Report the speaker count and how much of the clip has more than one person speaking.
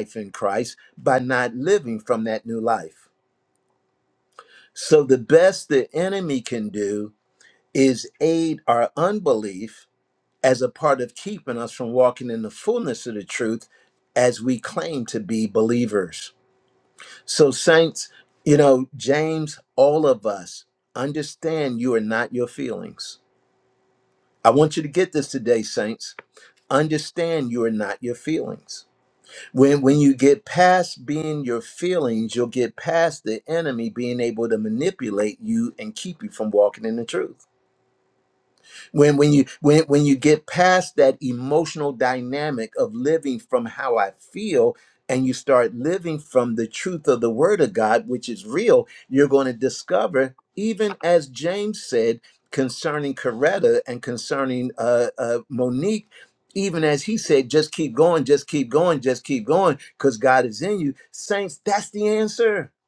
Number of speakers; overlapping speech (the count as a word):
one, no overlap